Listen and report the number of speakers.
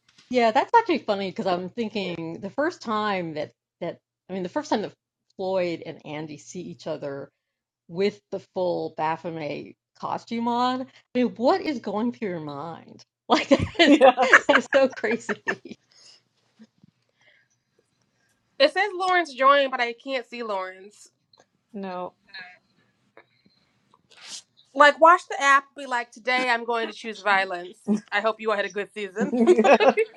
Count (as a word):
three